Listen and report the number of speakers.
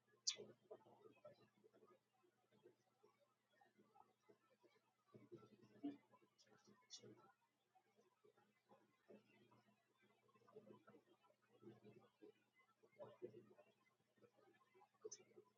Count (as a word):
zero